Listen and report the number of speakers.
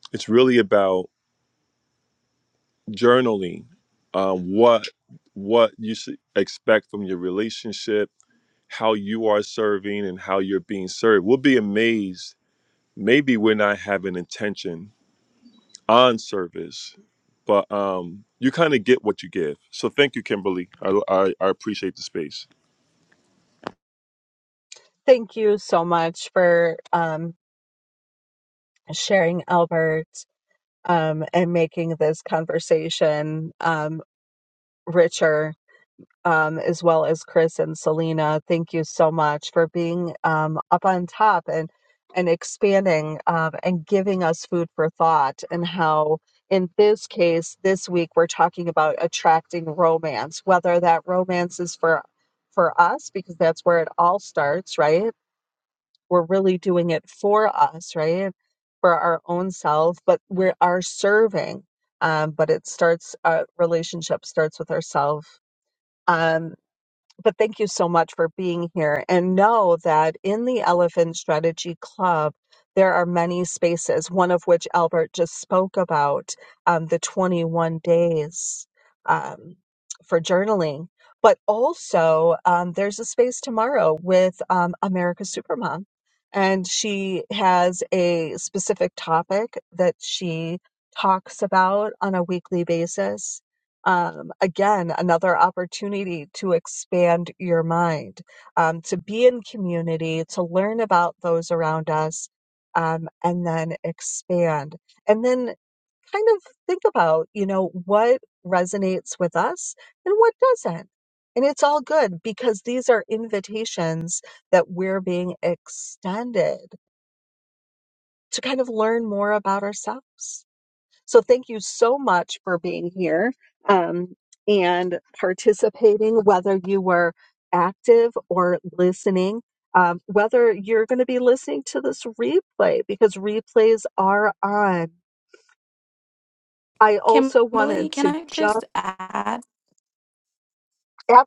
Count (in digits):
3